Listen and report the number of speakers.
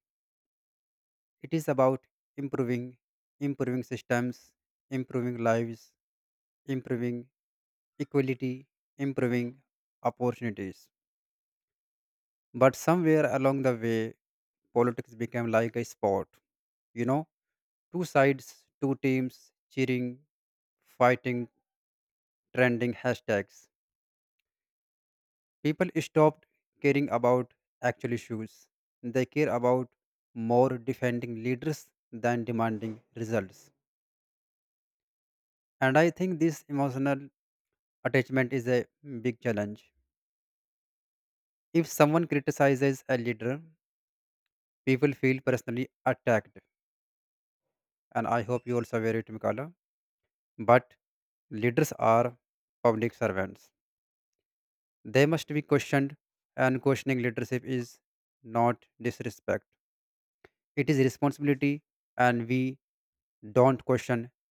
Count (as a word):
one